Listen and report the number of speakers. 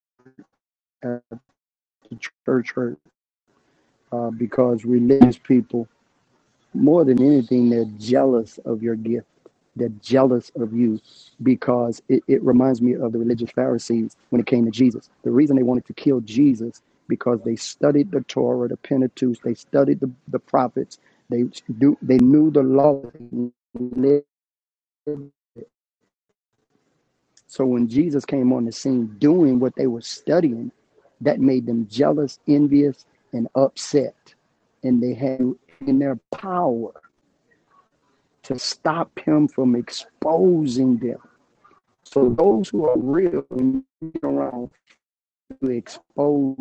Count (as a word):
one